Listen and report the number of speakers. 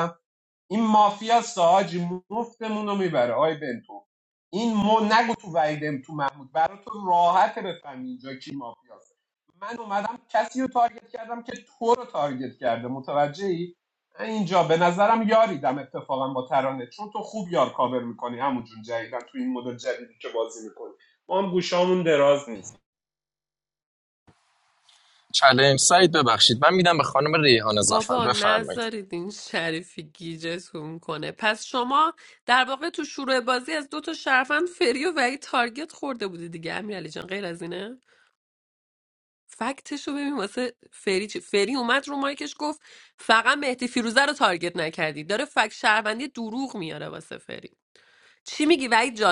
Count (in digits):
3